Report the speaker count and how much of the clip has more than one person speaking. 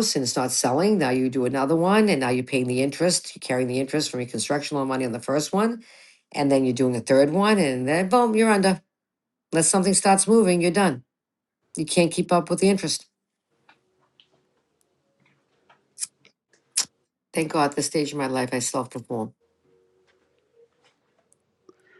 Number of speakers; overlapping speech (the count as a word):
one, no overlap